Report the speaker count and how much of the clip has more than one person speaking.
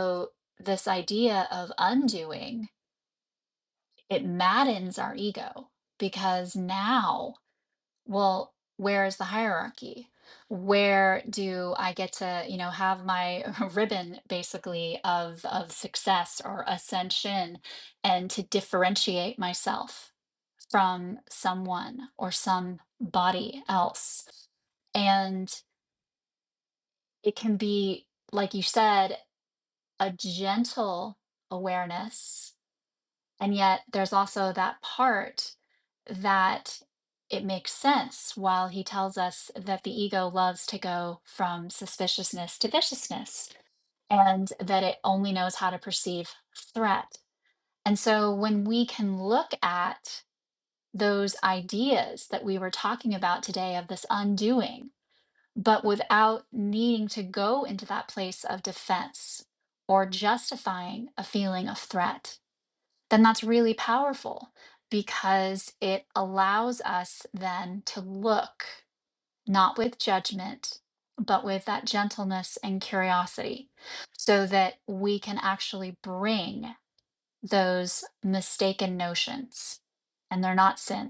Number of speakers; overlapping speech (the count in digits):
1, no overlap